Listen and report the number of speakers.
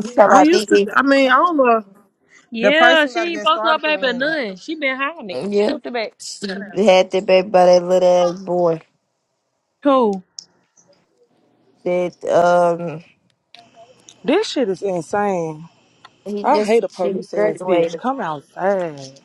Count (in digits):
4